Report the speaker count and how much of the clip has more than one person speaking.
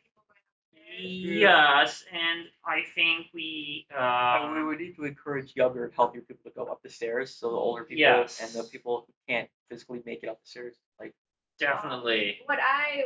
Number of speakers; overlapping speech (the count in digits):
3, about 17%